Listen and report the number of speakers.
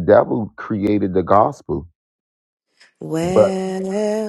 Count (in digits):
2